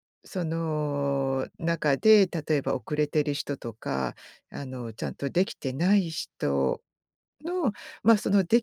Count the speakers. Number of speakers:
one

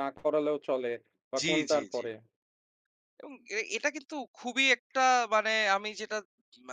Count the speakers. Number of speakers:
two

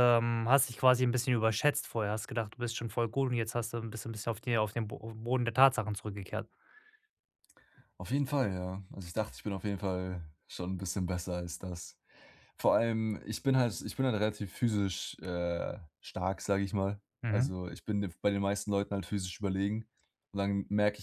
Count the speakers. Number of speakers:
two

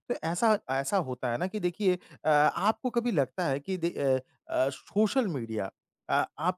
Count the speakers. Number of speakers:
one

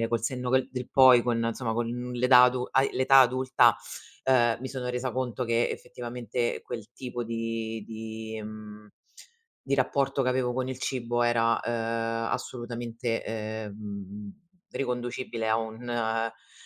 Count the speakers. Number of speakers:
one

